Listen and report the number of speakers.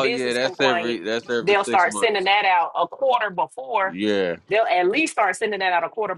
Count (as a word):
two